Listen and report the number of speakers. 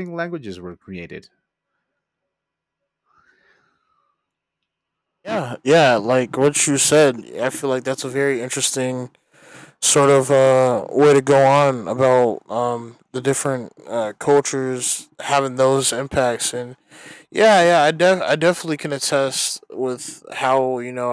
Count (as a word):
two